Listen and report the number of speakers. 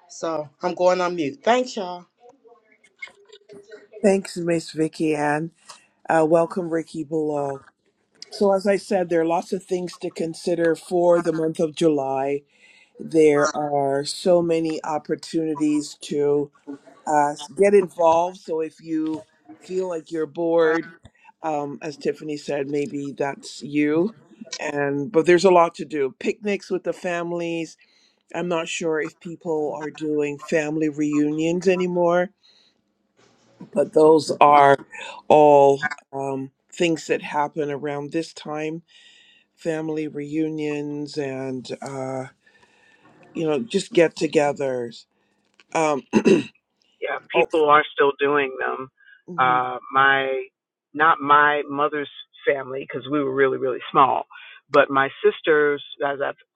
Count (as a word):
three